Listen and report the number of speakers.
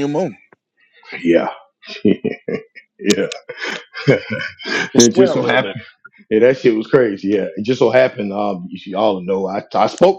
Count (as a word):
two